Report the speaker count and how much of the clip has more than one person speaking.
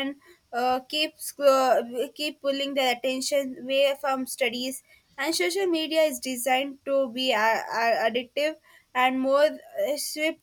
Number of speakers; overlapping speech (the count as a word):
one, no overlap